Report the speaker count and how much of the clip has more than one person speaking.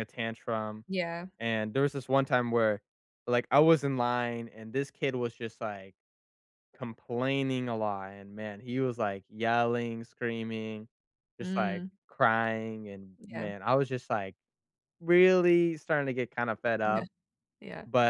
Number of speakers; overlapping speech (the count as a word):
two, about 5%